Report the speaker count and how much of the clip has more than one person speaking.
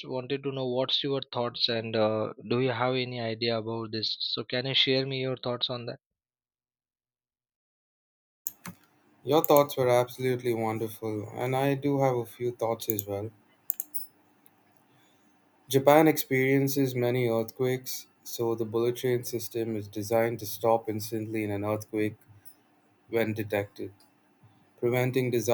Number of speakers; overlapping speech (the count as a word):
two, no overlap